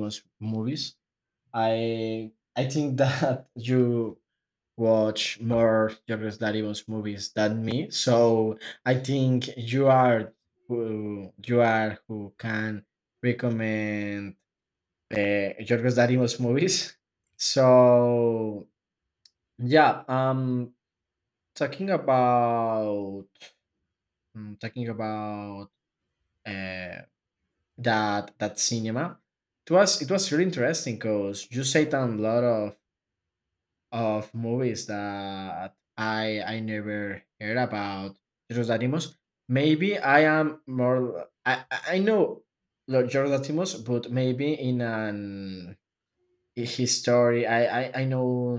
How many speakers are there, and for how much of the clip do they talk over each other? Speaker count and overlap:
1, no overlap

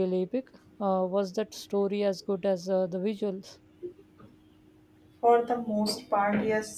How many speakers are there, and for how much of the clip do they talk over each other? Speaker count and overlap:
2, no overlap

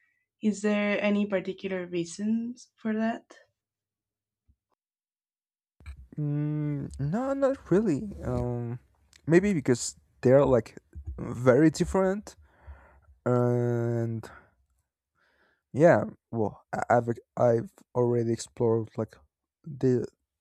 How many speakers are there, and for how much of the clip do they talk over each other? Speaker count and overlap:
2, no overlap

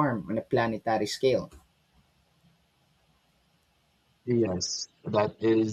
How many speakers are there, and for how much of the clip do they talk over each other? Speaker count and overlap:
2, no overlap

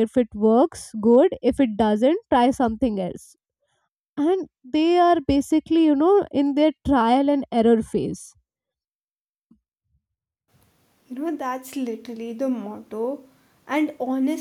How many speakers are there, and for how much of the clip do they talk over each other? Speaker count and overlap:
2, no overlap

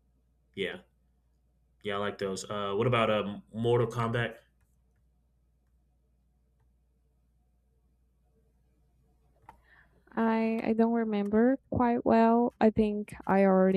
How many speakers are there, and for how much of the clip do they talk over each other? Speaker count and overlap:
2, no overlap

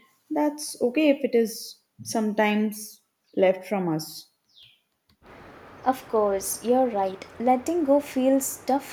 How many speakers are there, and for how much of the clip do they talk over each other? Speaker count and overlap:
2, no overlap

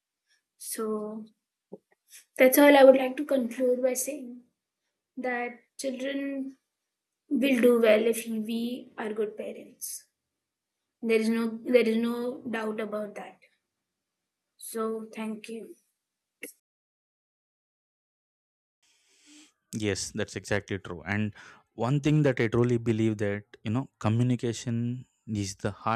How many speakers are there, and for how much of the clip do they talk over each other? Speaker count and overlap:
2, no overlap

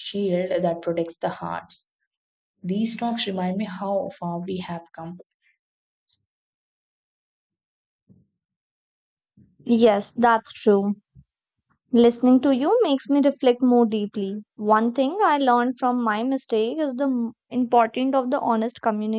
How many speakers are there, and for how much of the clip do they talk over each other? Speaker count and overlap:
2, no overlap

